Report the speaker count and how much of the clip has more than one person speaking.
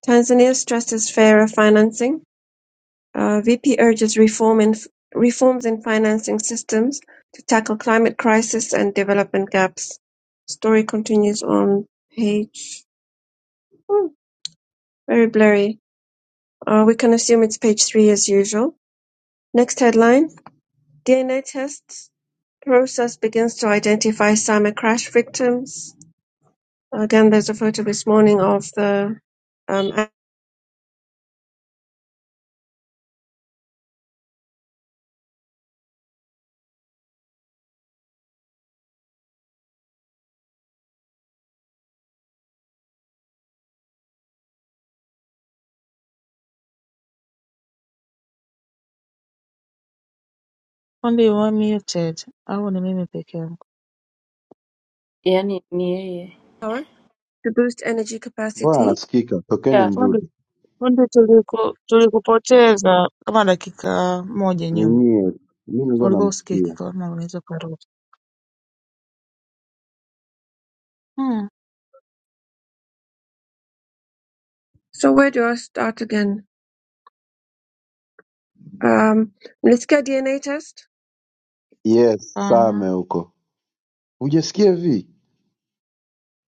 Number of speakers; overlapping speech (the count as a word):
four, about 3%